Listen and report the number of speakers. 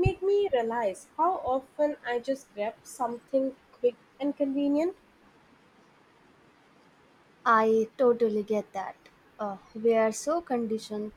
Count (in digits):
2